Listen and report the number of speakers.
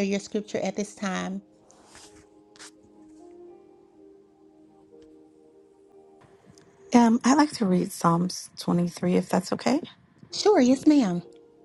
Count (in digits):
2